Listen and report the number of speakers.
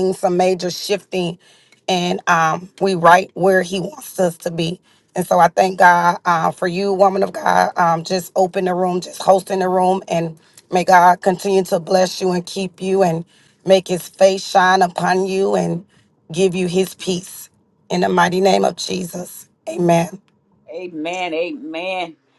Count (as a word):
two